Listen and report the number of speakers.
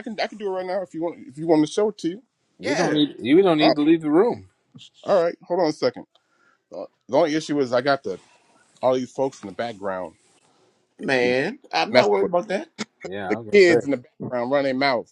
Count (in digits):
3